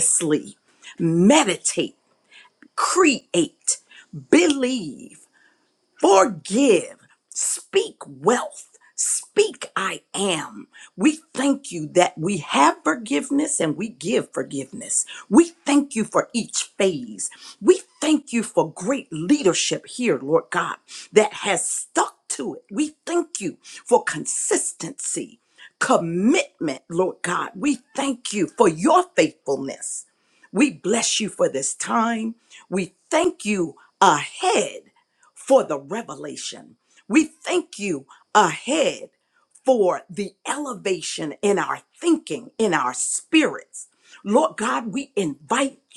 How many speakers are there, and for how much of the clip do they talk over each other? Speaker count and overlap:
one, no overlap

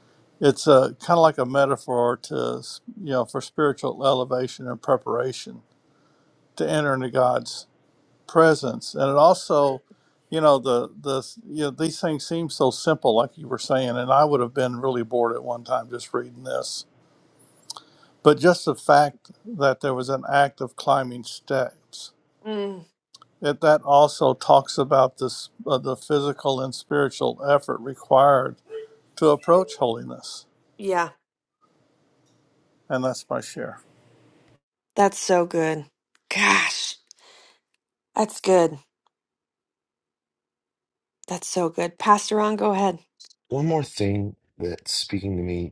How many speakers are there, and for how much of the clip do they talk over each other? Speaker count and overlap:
three, no overlap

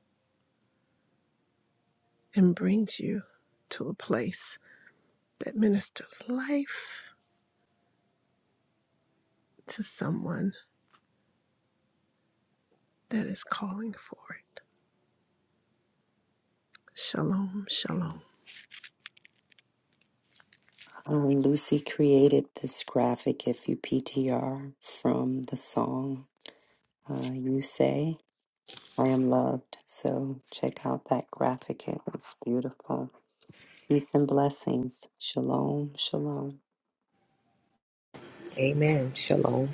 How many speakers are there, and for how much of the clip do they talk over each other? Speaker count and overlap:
three, no overlap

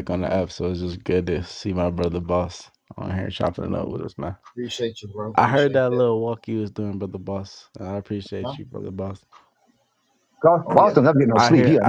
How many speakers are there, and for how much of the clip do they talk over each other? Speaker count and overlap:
three, about 14%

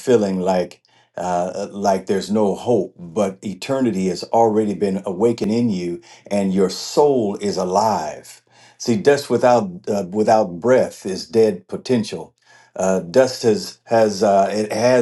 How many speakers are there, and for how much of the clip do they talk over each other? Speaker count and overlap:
one, no overlap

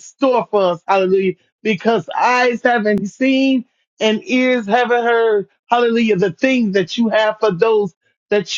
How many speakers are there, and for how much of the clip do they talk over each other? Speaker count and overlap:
one, no overlap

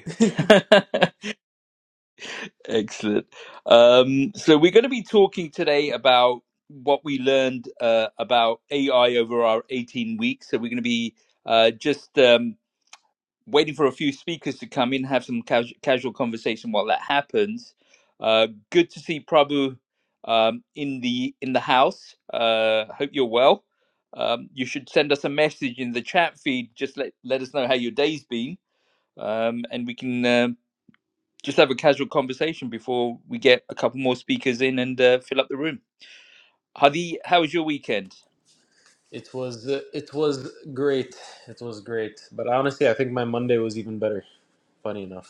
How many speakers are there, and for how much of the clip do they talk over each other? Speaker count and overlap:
two, no overlap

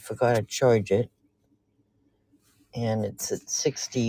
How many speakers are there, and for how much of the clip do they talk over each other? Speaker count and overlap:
one, no overlap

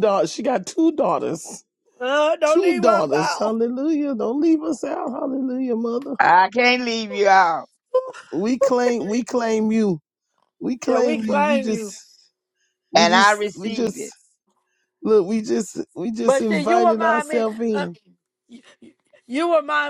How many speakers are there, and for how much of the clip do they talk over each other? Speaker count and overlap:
three, about 24%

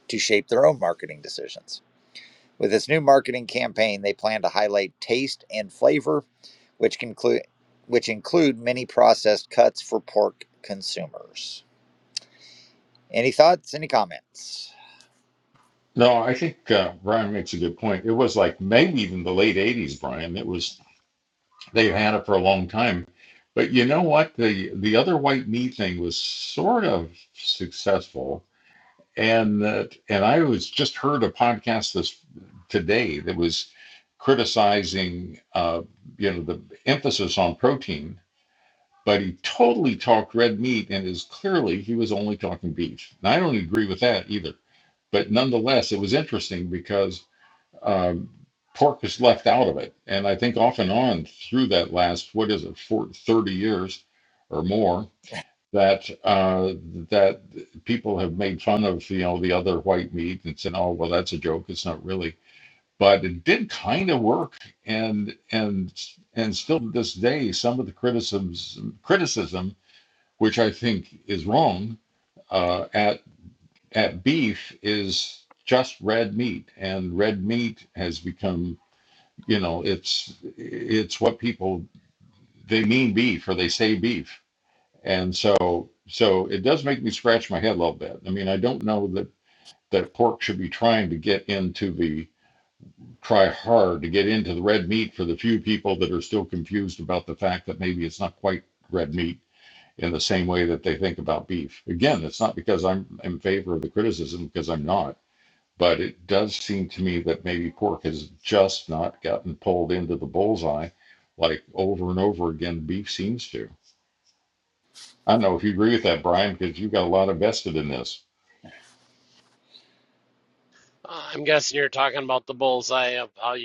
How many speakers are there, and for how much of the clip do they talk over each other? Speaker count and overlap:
three, no overlap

